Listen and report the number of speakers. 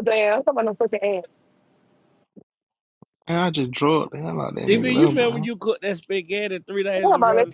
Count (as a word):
three